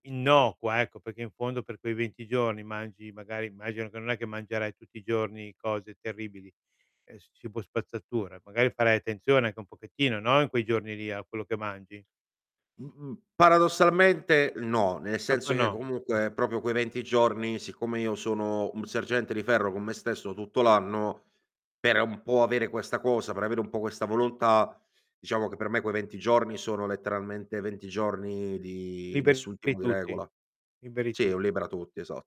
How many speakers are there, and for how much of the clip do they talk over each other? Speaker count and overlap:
two, about 5%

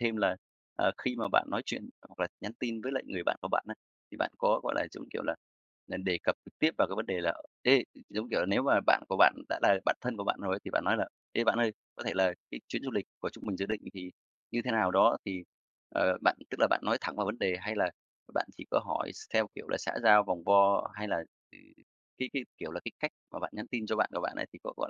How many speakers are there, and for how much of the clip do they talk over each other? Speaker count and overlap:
one, no overlap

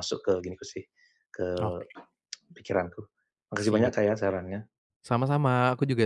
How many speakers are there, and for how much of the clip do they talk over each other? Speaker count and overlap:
two, about 8%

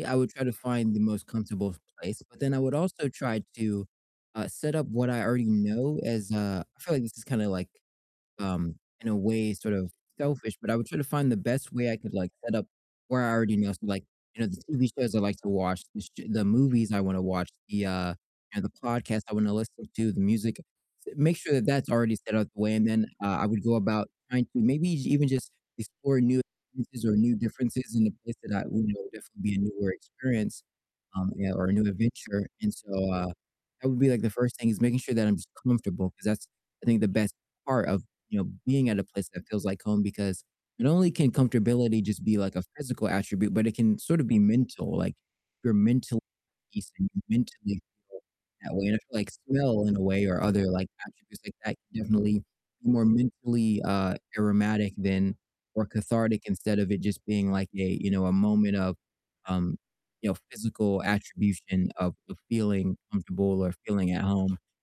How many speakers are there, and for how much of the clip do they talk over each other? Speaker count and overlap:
one, no overlap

